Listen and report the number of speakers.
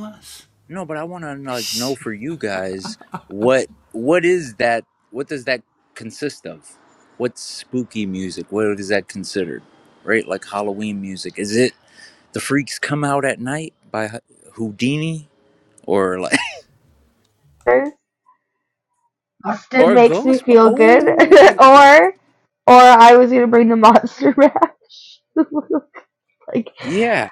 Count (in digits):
2